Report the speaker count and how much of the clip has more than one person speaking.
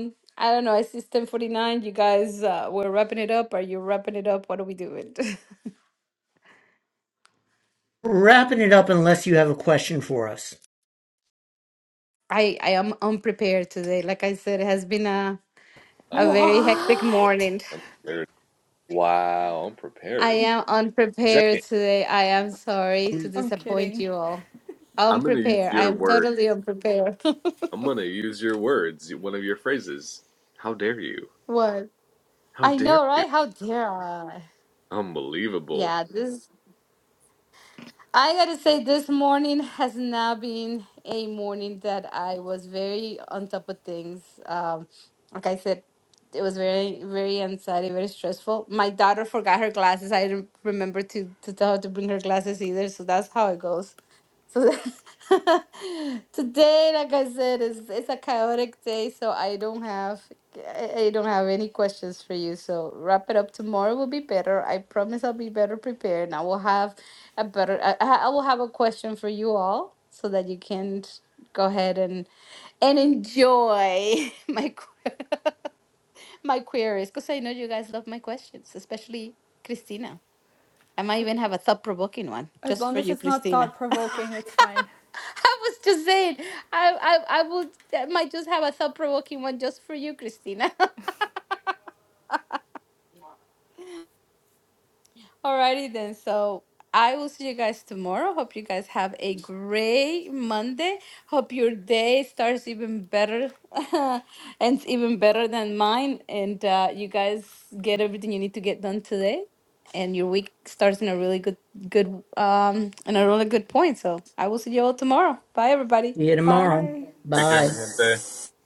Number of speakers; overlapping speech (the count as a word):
four, about 5%